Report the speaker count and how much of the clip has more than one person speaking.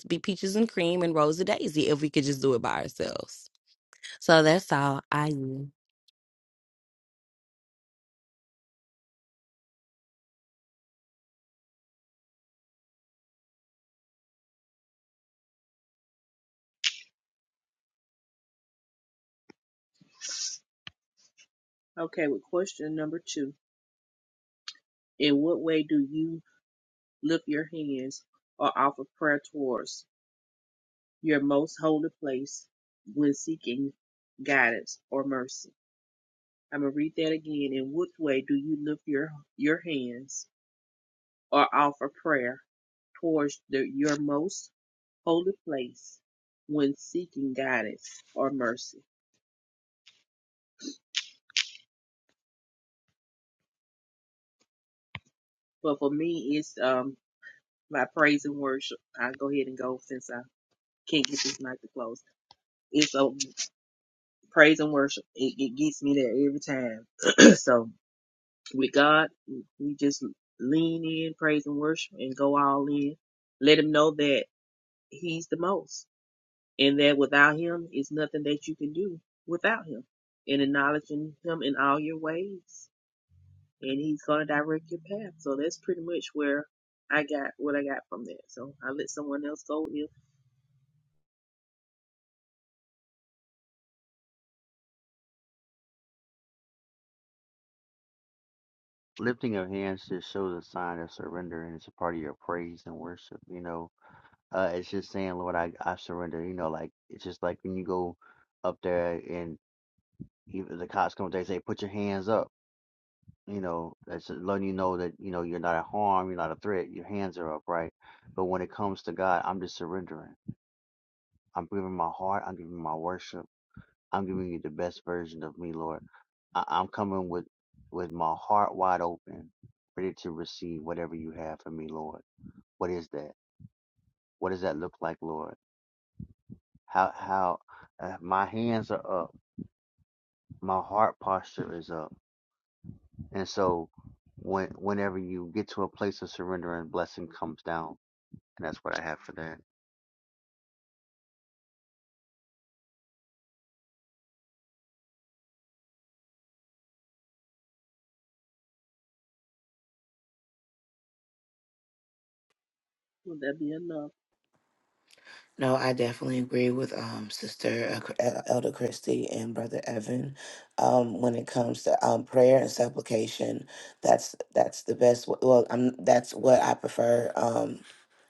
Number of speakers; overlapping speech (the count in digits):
4, no overlap